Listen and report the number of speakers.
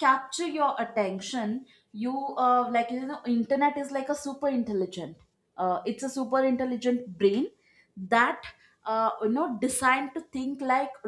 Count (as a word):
one